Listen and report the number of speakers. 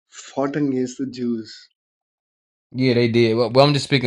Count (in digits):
2